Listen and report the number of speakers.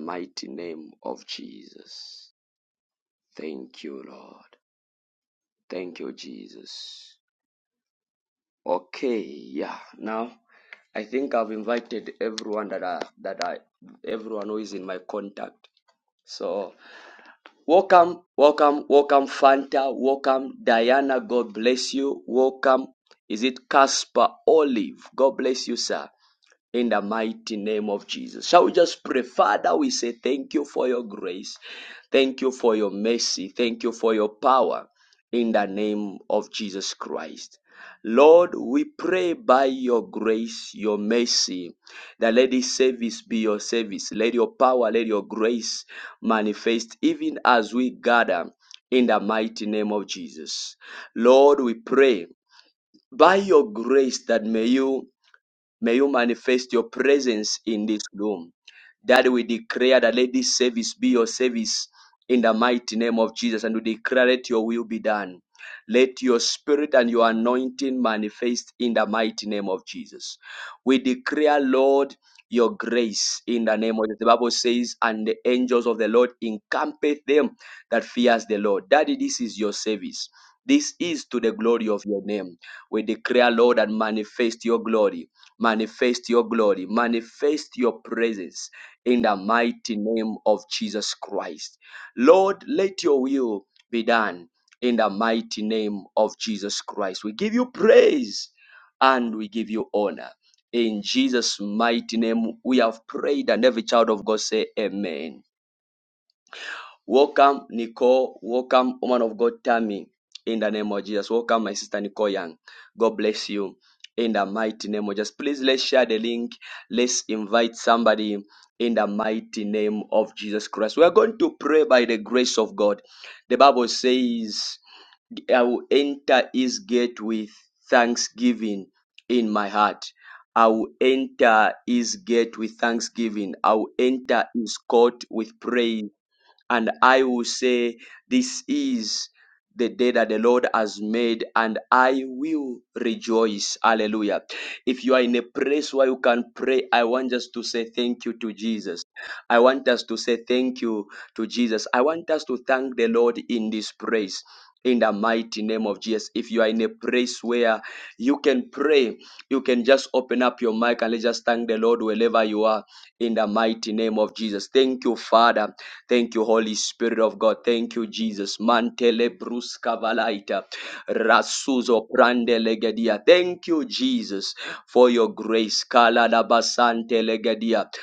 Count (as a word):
one